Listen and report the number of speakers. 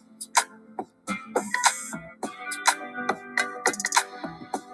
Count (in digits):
0